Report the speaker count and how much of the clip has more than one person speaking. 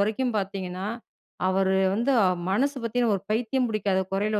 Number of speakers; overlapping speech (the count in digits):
1, no overlap